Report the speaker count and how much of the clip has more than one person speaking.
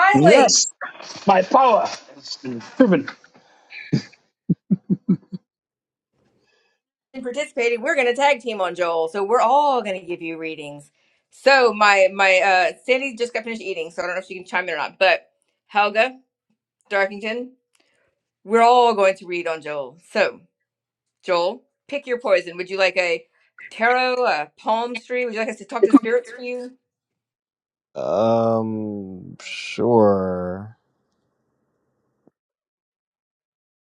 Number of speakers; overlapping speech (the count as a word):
three, about 1%